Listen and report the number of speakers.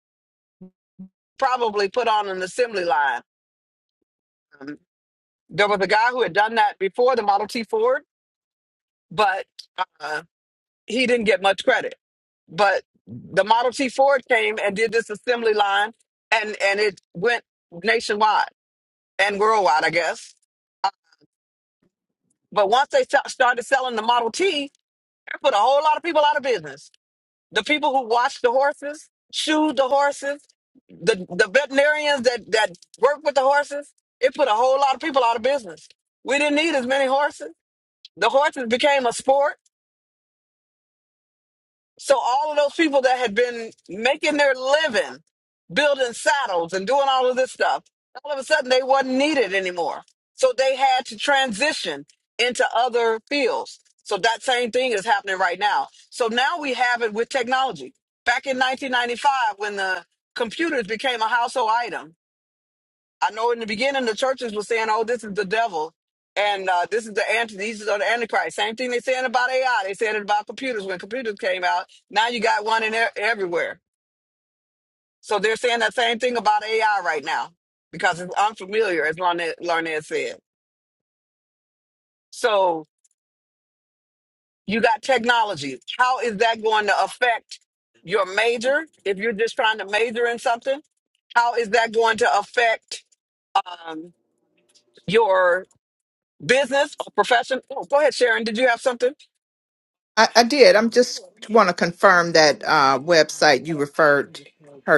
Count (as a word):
two